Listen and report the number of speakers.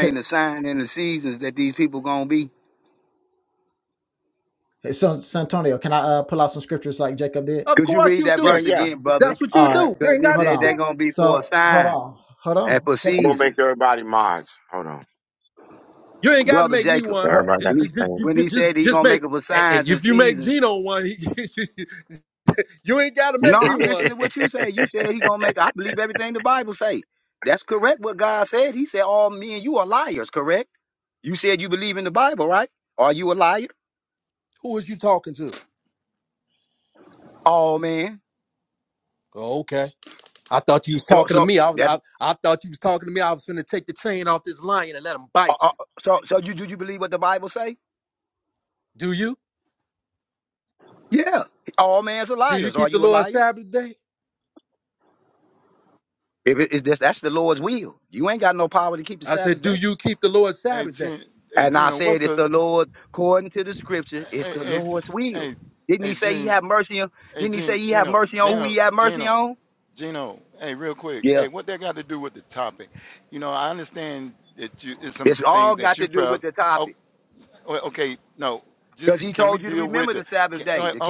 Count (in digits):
5